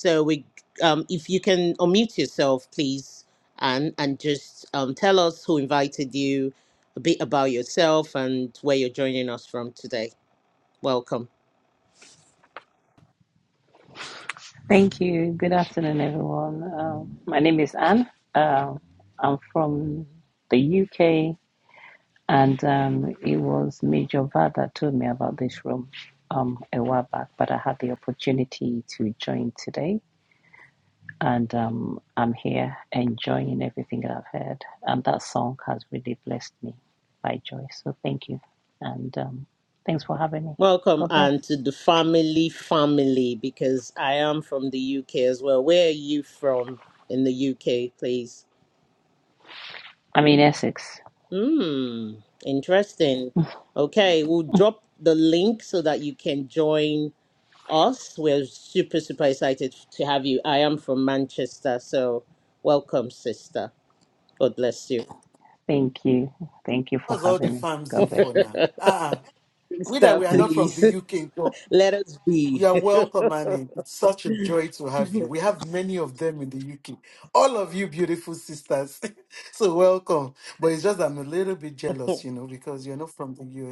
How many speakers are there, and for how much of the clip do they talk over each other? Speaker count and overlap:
three, about 3%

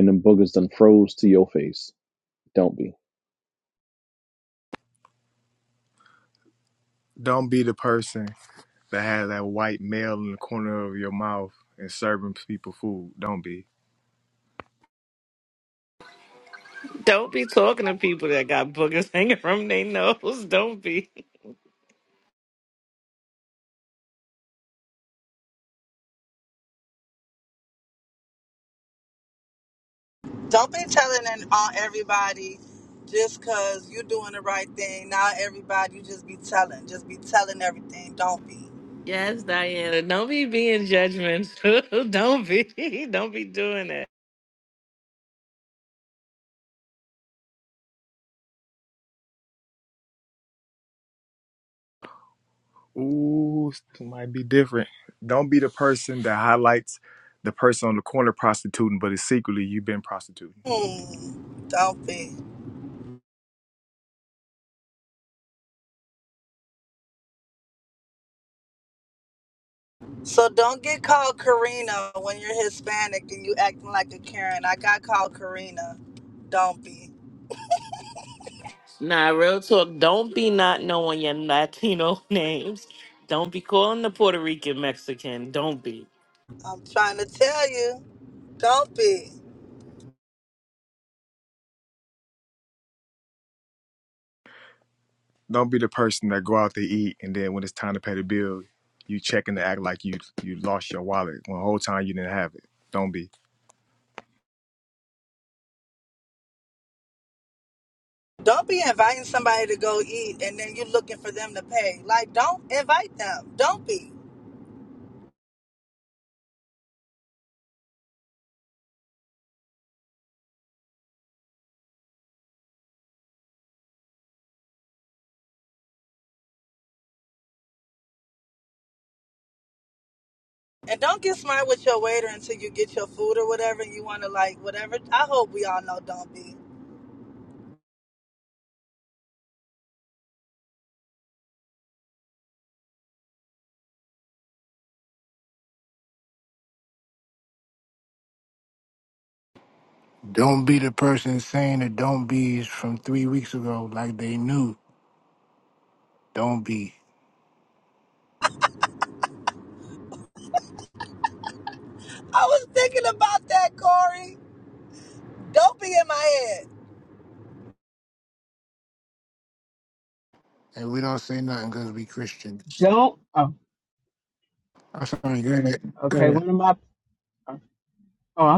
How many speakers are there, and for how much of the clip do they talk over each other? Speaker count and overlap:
six, under 1%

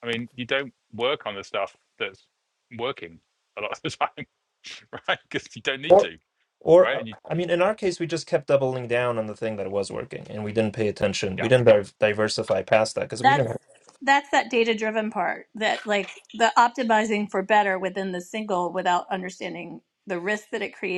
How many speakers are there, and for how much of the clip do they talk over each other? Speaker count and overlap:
three, about 5%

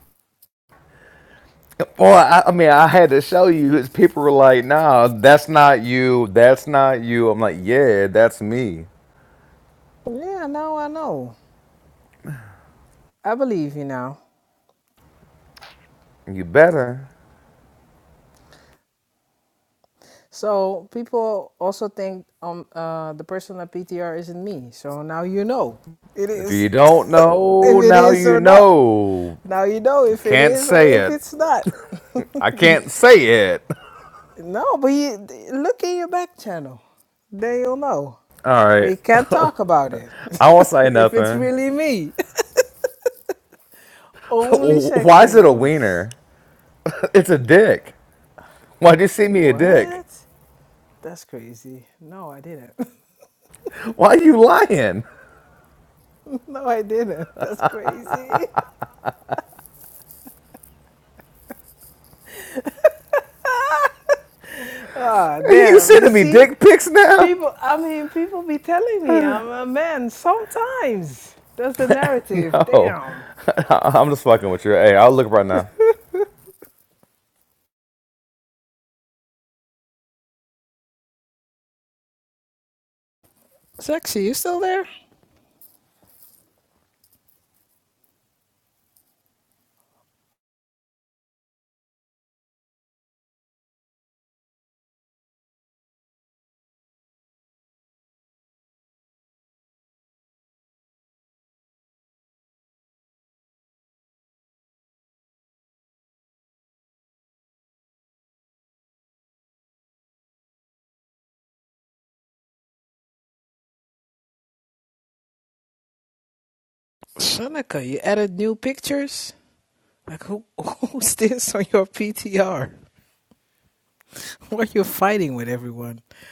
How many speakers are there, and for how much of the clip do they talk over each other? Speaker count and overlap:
two, about 5%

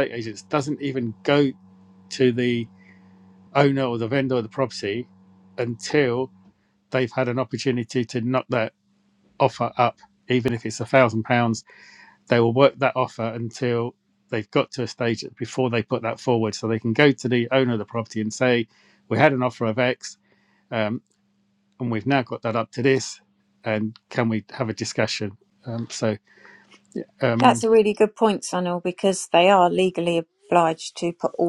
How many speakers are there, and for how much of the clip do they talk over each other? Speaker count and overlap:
two, about 1%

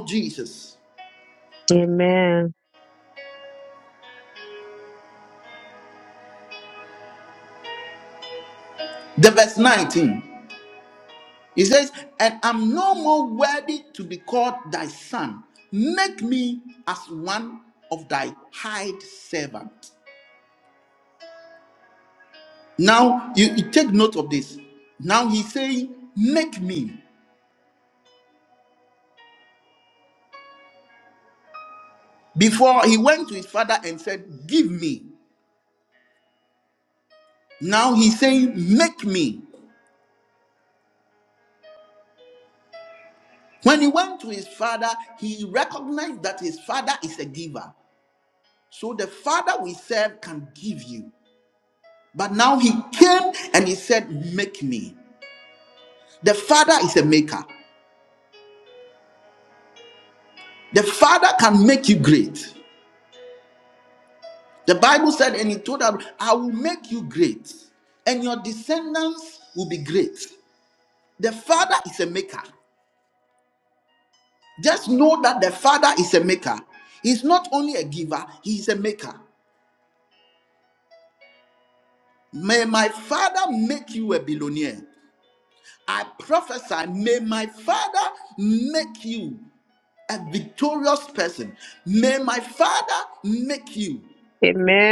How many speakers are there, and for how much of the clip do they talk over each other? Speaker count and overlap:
two, no overlap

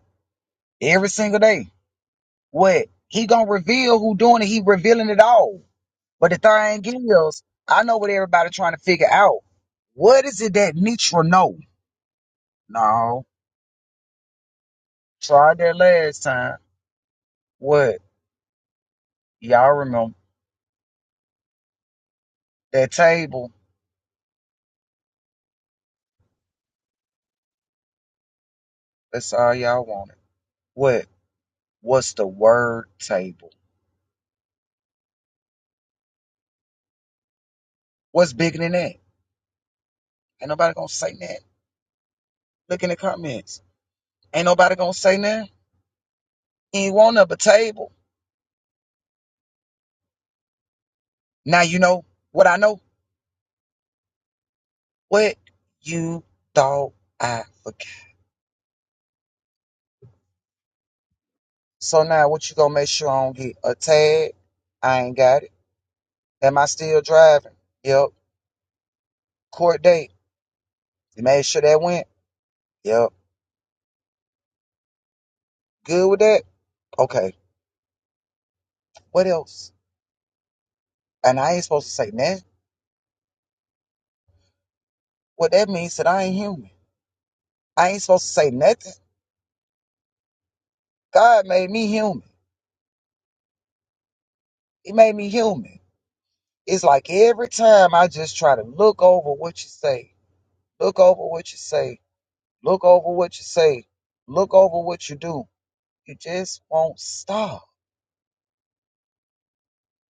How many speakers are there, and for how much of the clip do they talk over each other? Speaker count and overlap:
one, no overlap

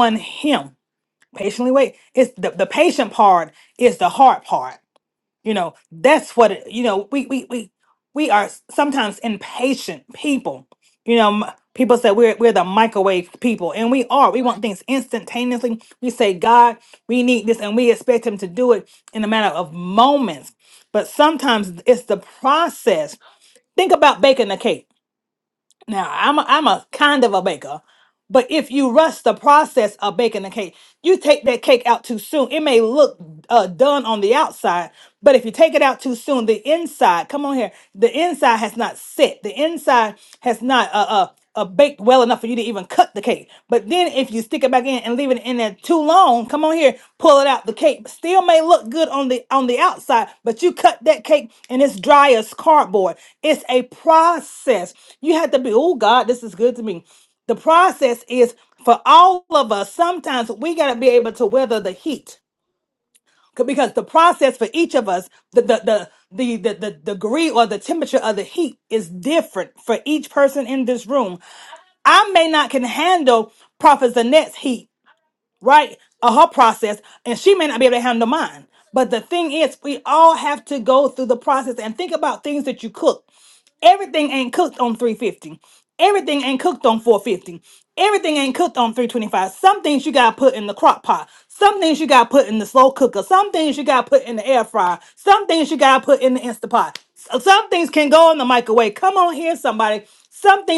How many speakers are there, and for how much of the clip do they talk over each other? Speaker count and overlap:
one, no overlap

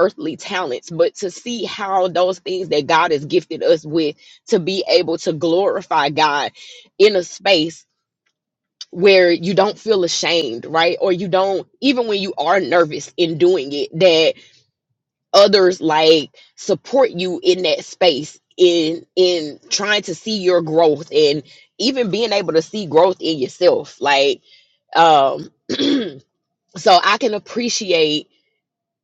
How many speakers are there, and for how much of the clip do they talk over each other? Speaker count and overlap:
one, no overlap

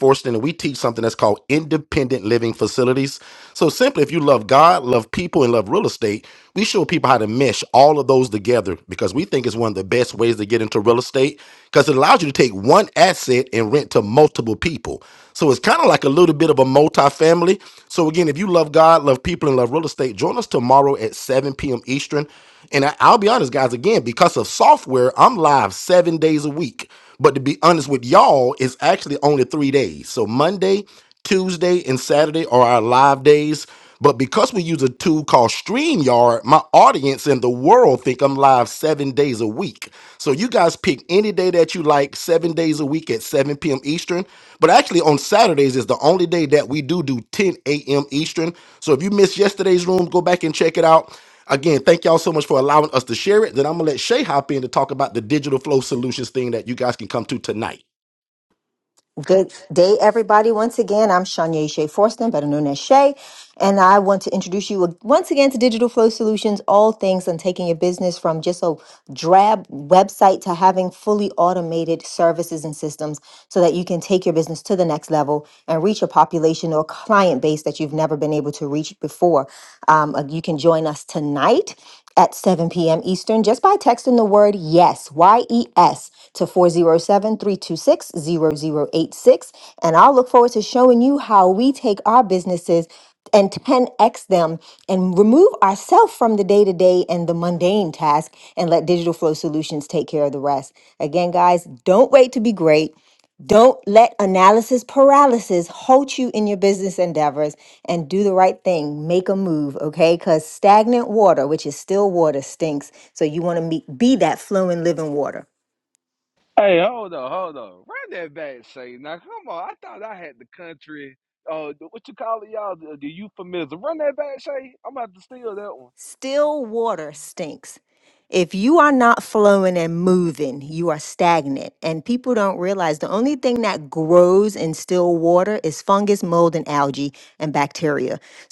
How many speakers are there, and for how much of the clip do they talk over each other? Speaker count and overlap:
three, no overlap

